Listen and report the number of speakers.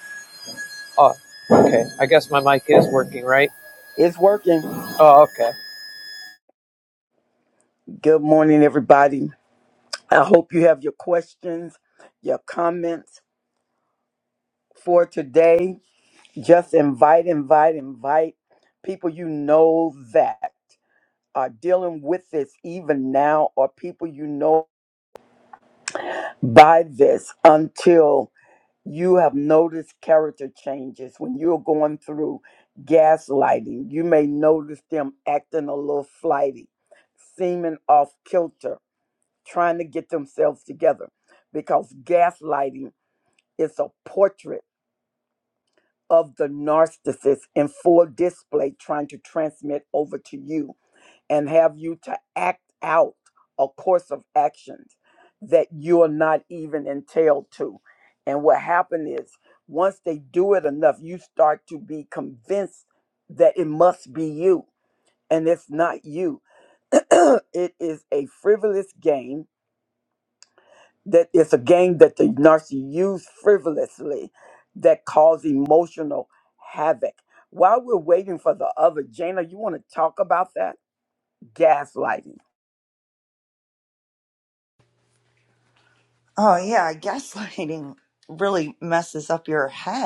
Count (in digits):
3